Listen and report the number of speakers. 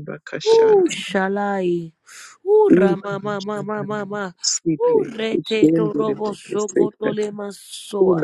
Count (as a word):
two